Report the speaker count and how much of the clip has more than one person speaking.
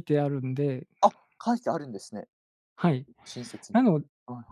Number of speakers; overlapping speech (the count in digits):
2, no overlap